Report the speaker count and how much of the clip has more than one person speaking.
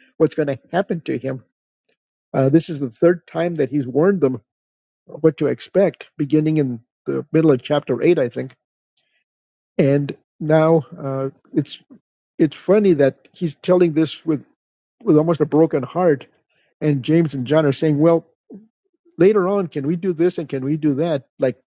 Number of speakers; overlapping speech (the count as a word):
one, no overlap